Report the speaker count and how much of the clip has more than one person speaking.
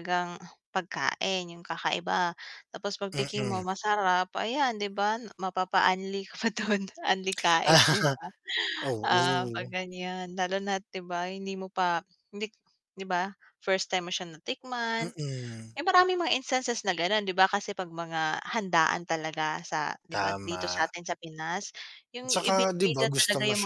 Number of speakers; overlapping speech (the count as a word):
two, about 15%